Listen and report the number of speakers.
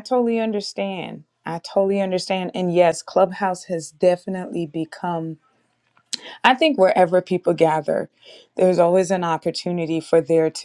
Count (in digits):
1